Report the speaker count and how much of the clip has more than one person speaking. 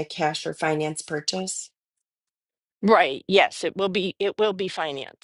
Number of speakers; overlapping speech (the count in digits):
2, no overlap